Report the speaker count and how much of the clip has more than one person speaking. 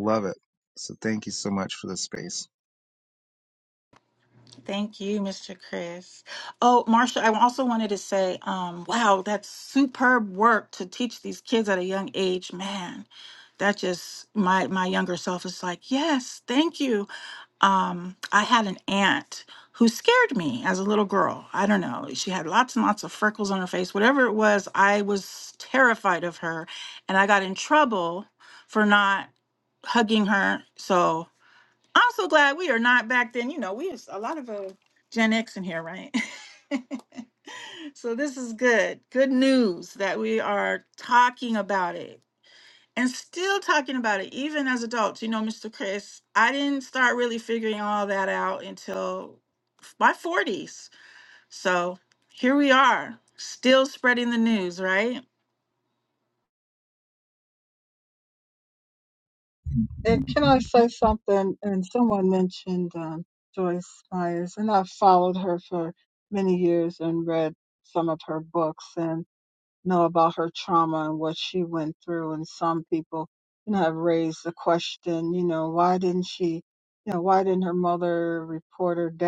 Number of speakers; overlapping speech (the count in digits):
3, no overlap